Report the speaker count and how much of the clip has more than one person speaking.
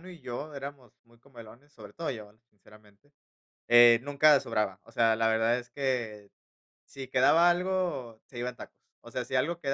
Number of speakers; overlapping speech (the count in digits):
1, no overlap